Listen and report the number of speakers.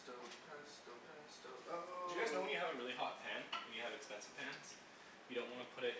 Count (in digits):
2